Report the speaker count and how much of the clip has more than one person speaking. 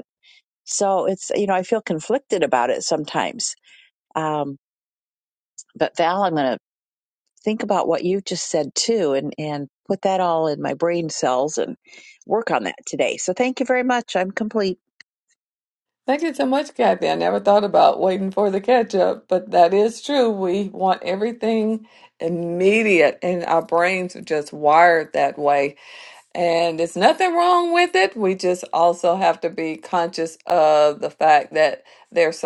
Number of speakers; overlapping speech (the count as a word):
two, no overlap